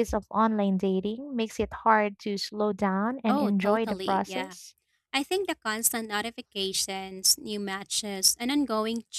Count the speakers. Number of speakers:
two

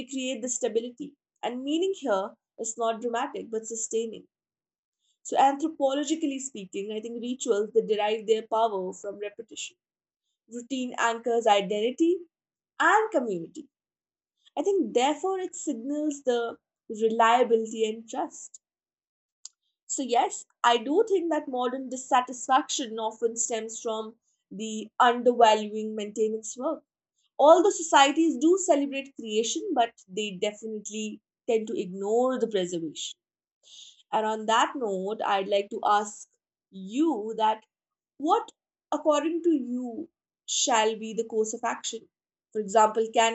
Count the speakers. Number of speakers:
one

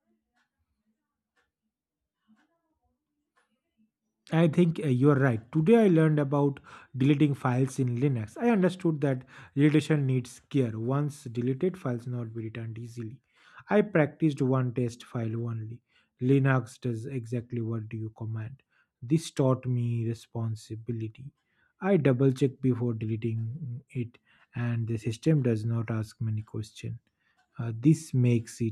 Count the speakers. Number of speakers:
one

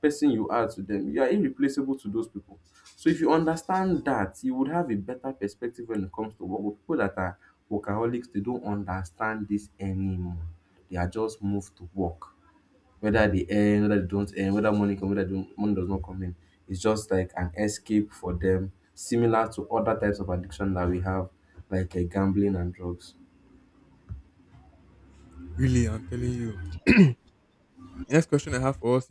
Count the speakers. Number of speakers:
two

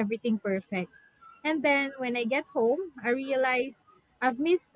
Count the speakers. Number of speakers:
one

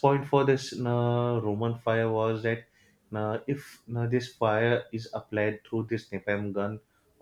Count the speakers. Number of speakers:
one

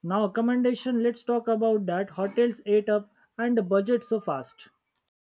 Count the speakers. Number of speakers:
one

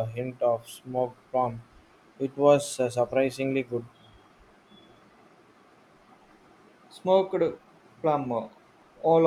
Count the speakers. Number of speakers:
two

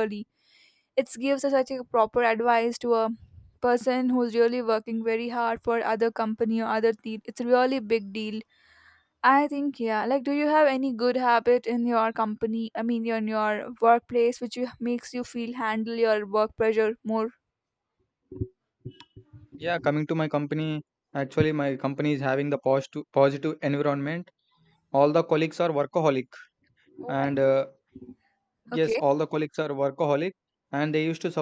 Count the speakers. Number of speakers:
two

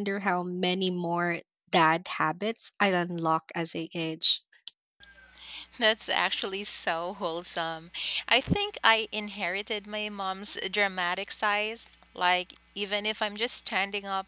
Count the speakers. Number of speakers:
two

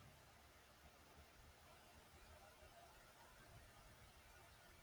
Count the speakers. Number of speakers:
zero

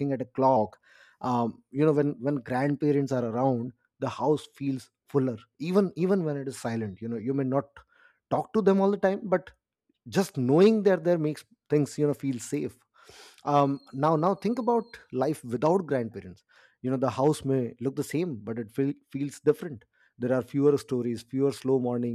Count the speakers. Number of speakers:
one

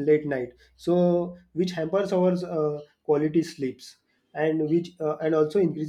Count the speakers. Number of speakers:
one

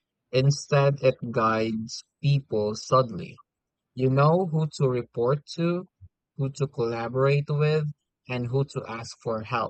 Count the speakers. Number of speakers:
one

